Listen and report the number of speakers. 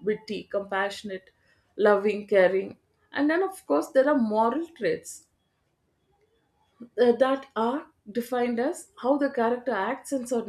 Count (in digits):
1